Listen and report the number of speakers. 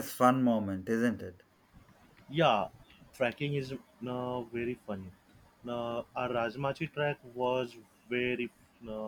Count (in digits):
2